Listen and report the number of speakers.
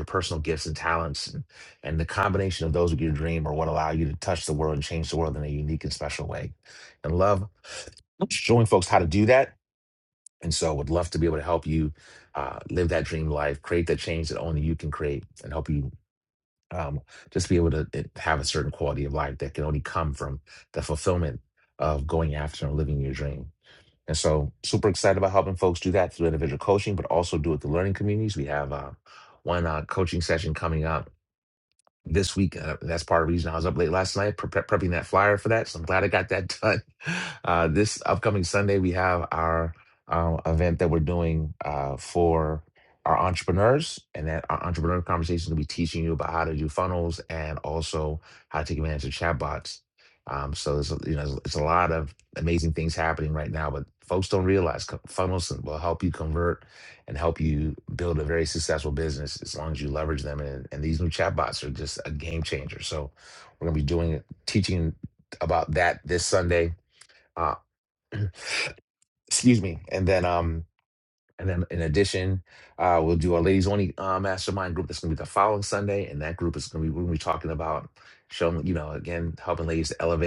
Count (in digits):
1